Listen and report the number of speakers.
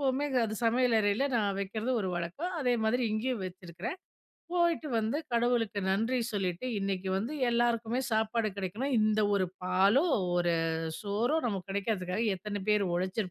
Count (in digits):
1